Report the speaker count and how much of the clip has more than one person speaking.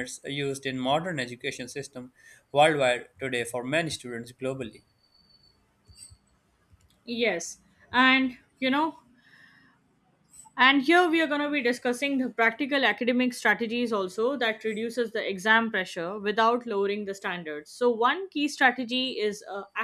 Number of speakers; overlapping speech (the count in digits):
2, no overlap